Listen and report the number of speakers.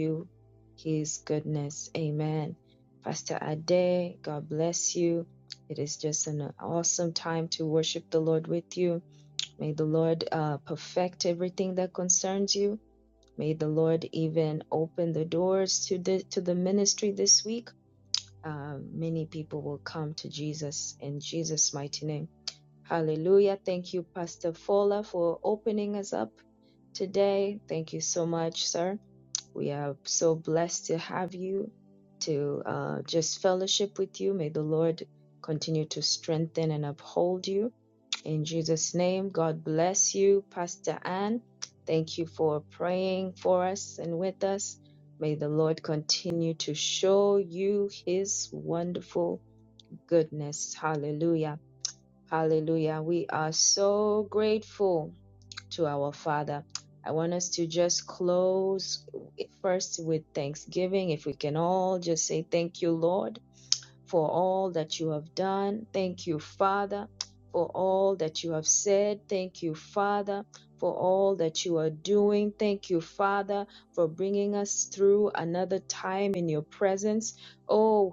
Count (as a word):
one